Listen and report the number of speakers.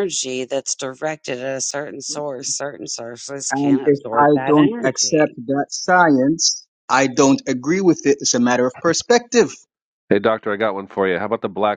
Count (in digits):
3